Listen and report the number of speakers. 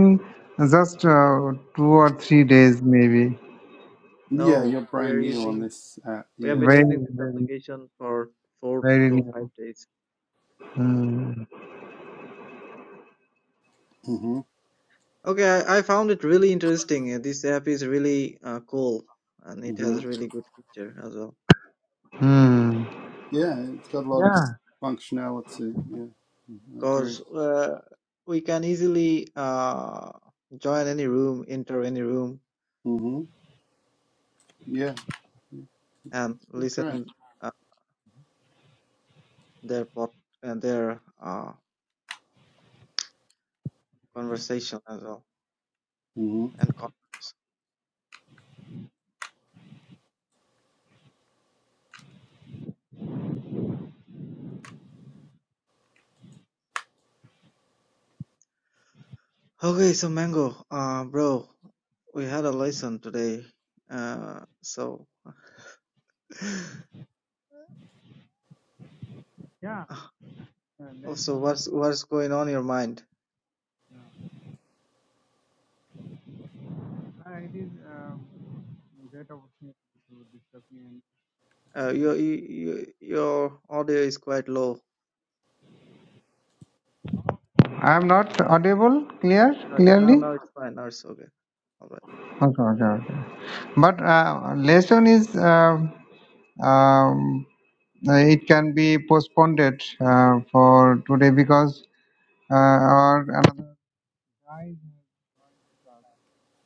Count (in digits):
3